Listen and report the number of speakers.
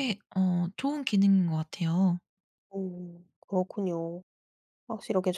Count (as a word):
two